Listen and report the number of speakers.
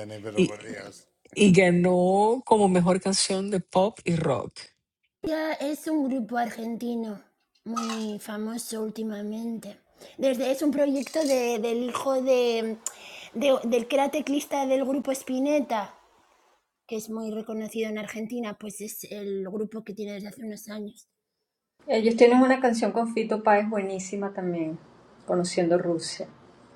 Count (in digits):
3